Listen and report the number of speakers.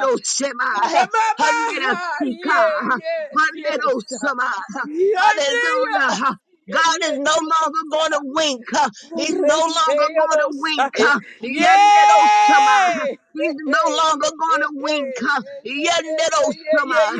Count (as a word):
two